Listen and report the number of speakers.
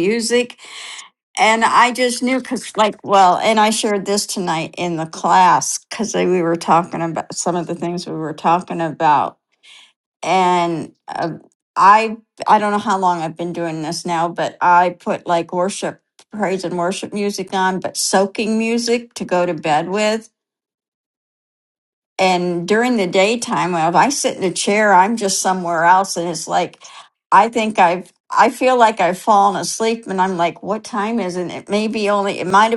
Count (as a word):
one